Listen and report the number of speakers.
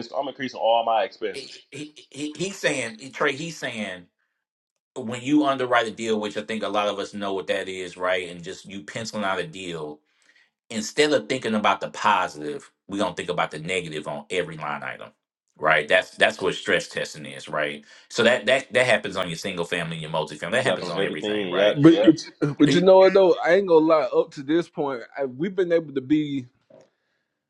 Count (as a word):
three